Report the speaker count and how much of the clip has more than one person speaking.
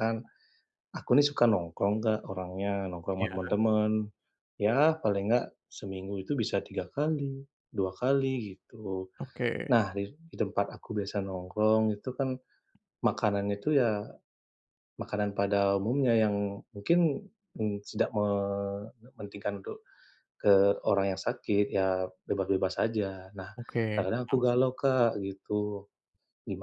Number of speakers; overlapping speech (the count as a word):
two, about 3%